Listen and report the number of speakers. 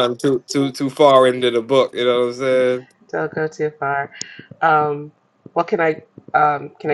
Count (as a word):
two